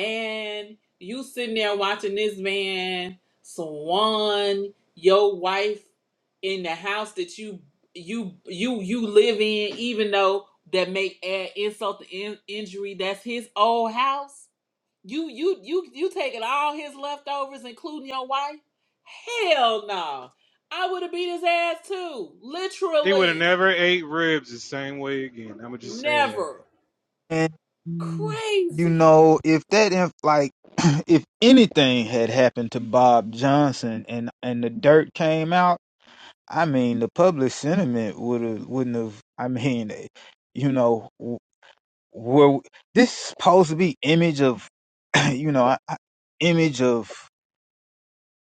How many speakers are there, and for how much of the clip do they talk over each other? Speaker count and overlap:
three, about 3%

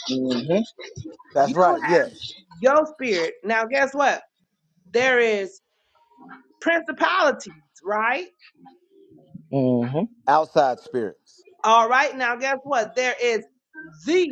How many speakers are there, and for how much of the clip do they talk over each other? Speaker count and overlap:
three, about 4%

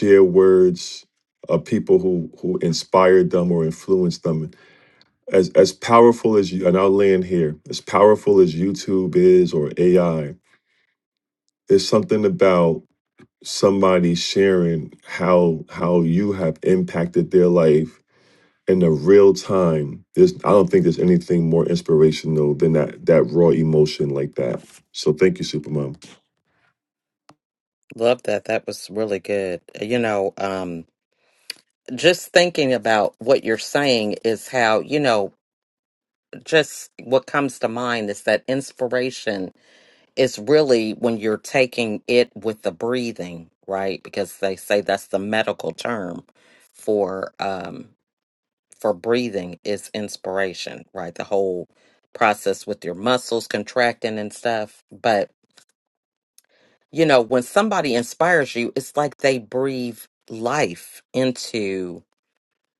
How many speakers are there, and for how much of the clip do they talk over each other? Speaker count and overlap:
two, no overlap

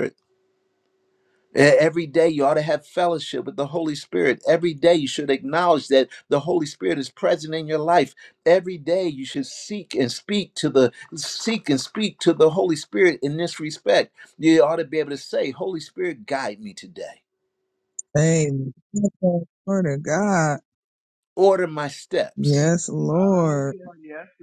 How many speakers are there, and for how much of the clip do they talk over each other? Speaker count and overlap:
three, about 3%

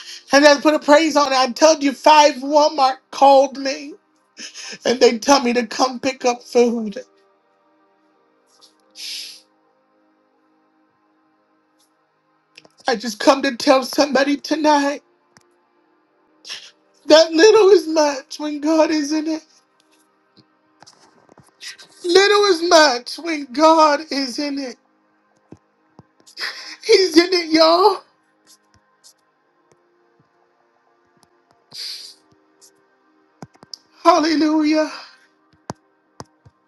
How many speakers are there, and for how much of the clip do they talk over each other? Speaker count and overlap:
one, no overlap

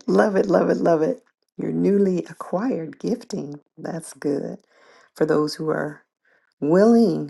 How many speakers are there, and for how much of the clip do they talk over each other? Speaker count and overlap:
one, no overlap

